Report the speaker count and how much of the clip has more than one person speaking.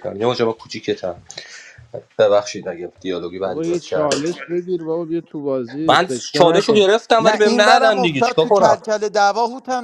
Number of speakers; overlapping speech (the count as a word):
three, about 35%